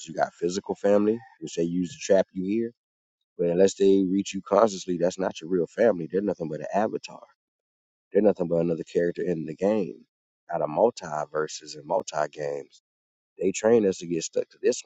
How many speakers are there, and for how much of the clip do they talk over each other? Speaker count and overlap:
one, no overlap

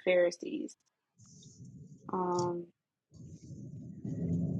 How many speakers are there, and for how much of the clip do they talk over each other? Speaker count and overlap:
one, no overlap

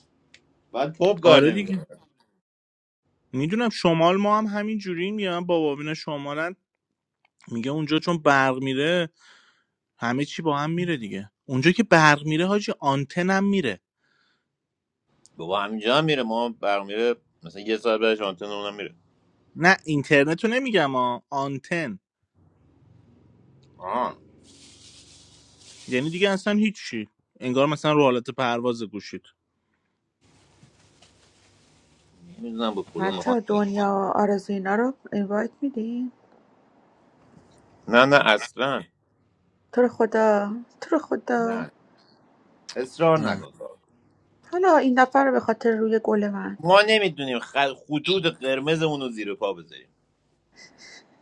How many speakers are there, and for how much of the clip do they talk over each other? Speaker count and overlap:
three, about 3%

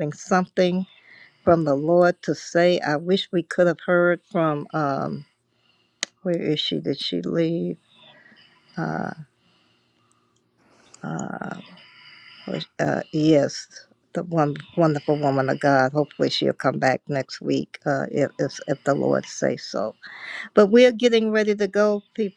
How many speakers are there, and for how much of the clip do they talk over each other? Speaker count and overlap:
one, no overlap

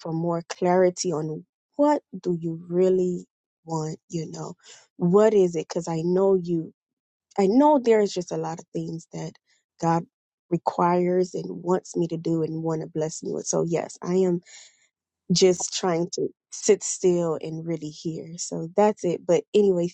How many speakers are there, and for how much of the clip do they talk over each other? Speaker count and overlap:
one, no overlap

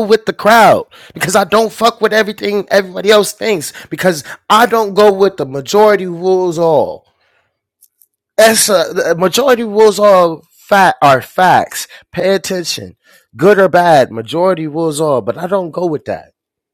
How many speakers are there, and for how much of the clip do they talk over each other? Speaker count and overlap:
one, no overlap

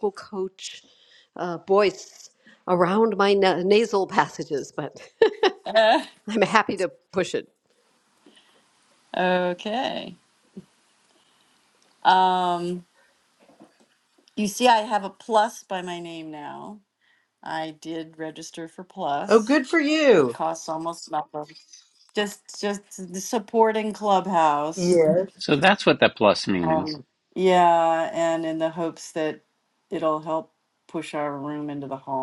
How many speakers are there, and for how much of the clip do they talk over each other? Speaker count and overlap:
four, about 1%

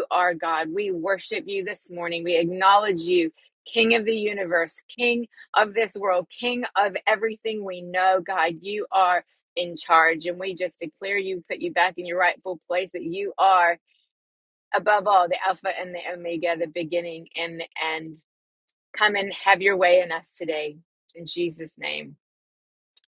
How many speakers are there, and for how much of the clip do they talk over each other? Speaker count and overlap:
one, no overlap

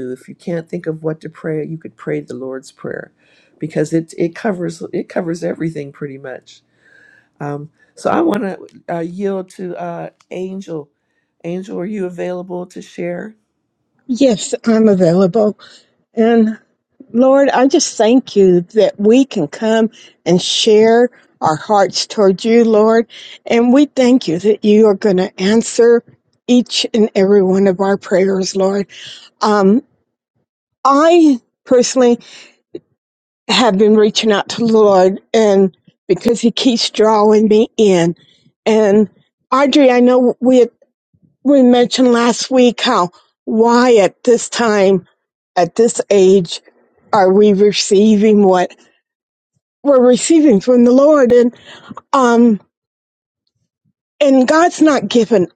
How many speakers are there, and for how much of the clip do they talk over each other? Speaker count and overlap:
two, no overlap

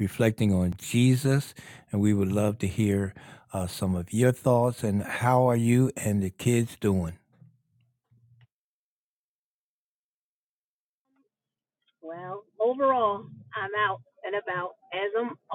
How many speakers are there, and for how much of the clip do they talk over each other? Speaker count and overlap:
two, no overlap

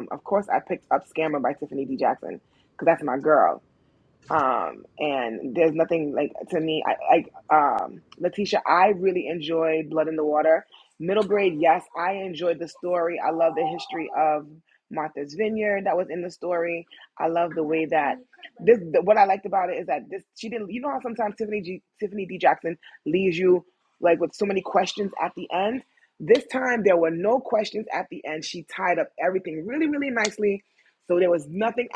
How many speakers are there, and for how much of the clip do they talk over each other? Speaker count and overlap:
one, no overlap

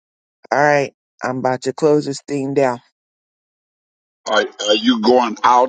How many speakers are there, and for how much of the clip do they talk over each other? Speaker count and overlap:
two, no overlap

